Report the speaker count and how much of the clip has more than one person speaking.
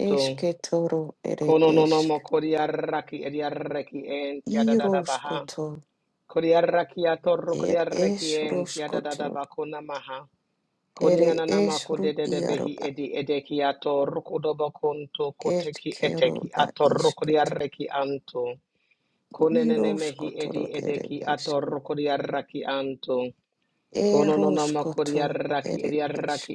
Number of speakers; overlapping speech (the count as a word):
two, about 46%